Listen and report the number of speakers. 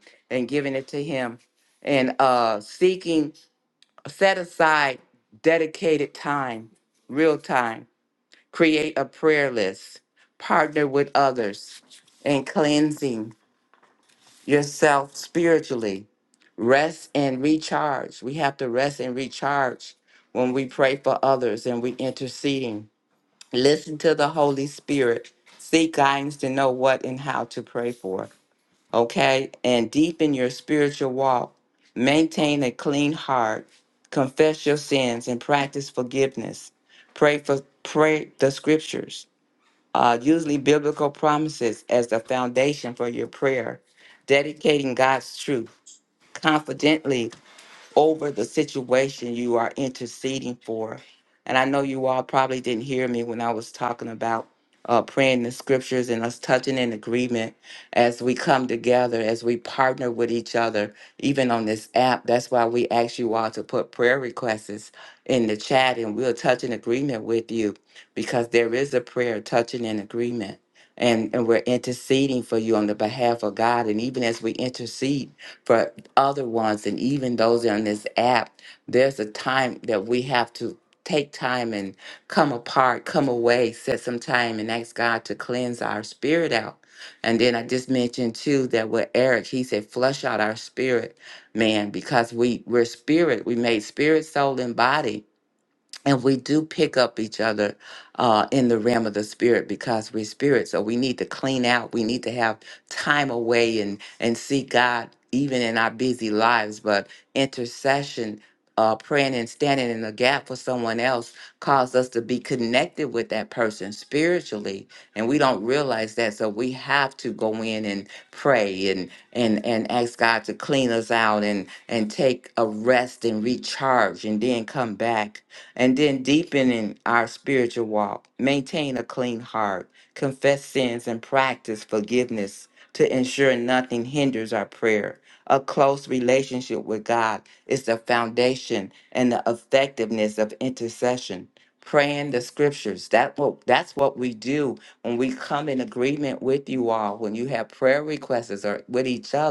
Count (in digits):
1